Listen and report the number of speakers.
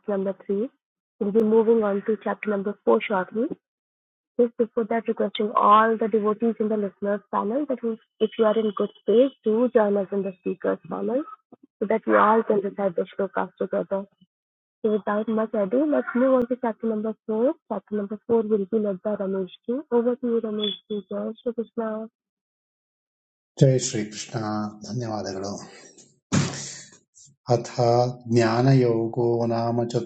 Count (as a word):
two